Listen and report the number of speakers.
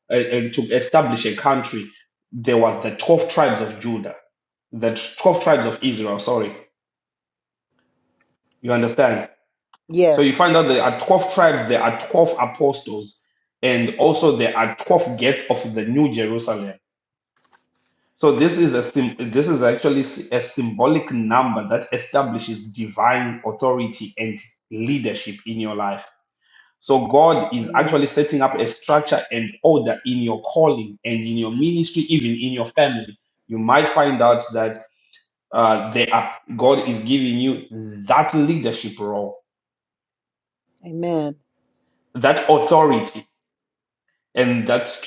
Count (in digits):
2